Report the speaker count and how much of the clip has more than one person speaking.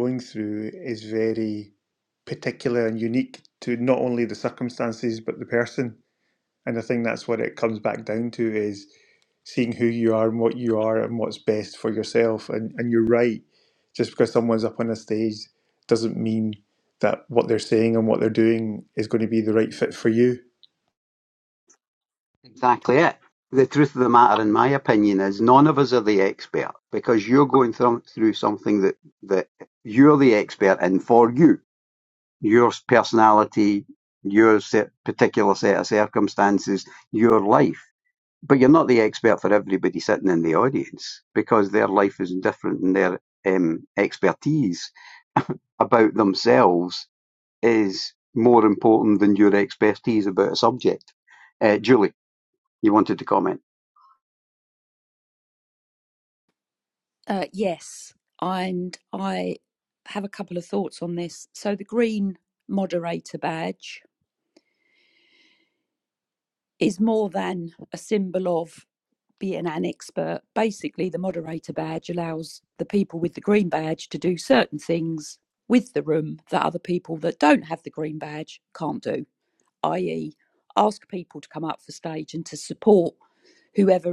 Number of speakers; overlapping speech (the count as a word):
three, no overlap